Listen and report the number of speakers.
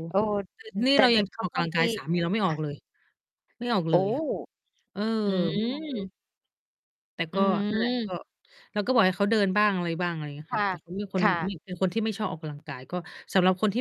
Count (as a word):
two